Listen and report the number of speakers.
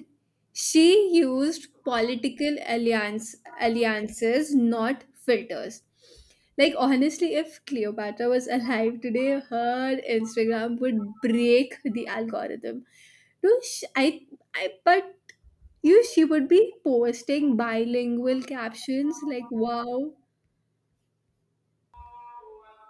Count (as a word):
one